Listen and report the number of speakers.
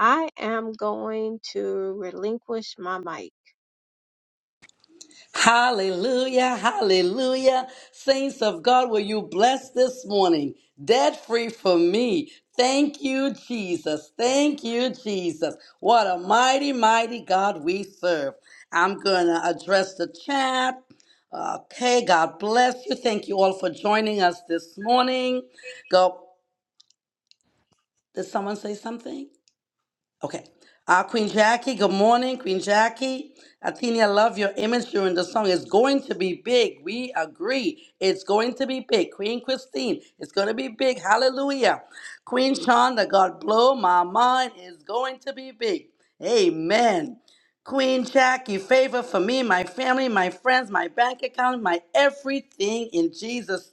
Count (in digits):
2